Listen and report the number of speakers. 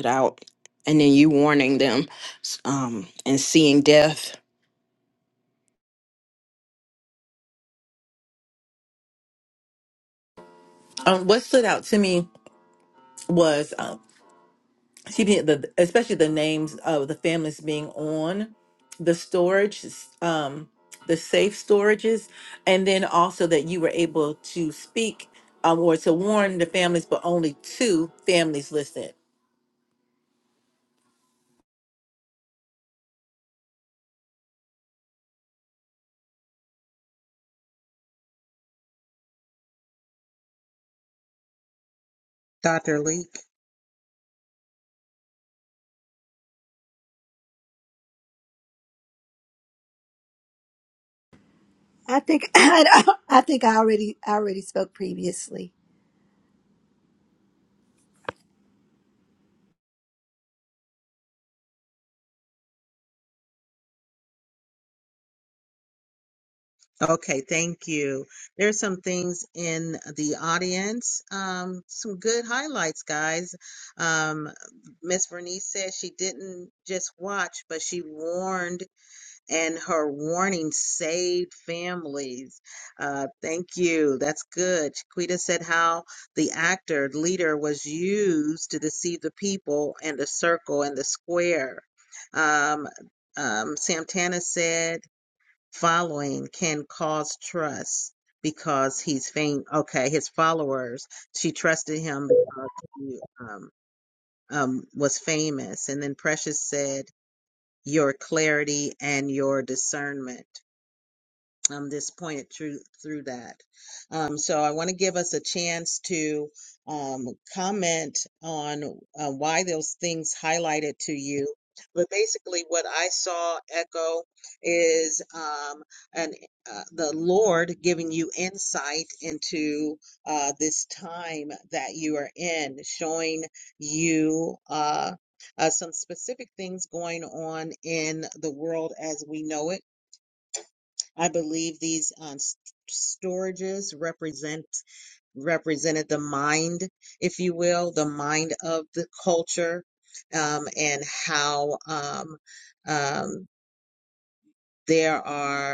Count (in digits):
4